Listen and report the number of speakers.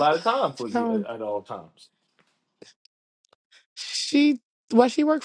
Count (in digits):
2